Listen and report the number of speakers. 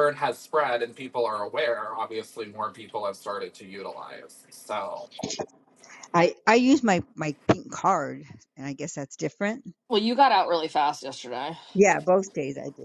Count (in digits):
3